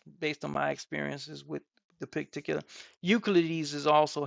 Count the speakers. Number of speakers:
one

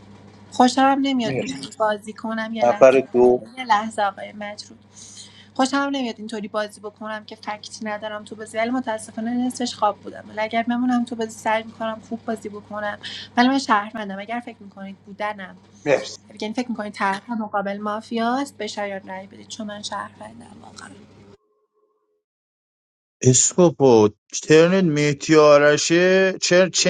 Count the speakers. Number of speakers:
three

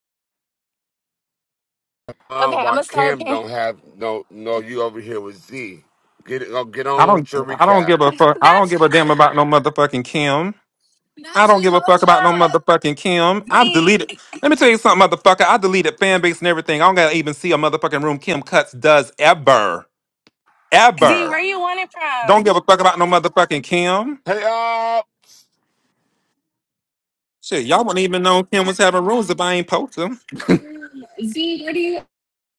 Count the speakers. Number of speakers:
three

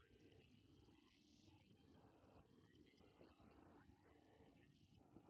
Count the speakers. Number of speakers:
zero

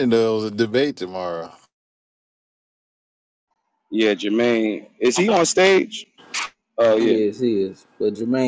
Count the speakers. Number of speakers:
three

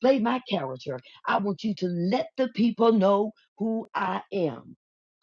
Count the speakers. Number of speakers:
one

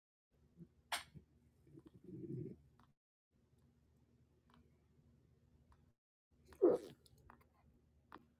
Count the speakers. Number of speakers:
zero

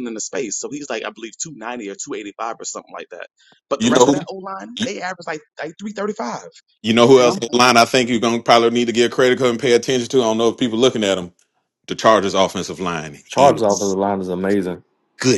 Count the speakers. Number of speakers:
three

